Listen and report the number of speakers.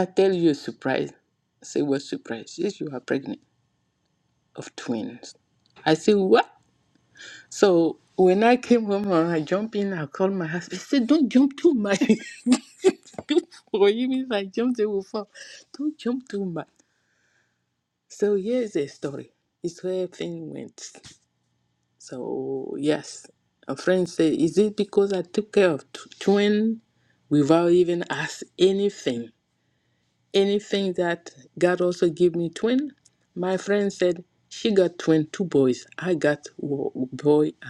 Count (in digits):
1